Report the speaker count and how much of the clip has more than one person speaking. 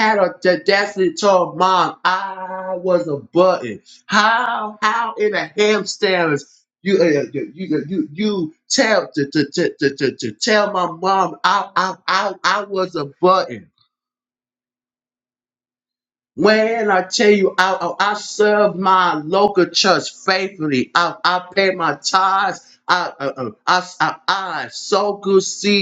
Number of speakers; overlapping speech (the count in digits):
1, no overlap